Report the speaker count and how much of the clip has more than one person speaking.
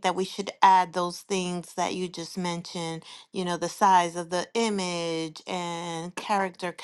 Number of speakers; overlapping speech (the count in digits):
1, no overlap